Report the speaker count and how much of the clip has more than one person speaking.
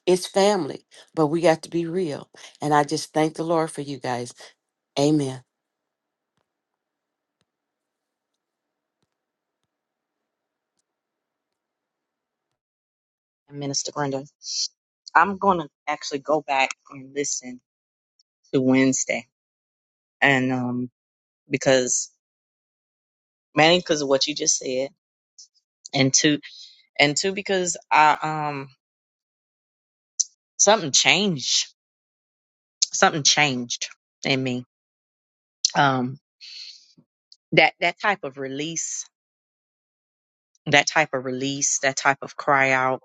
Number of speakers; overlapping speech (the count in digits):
2, no overlap